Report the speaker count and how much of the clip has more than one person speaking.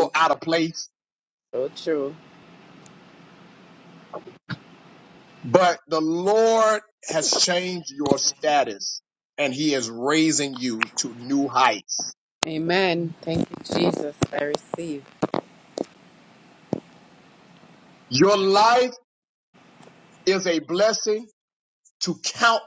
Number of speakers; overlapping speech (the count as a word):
two, about 1%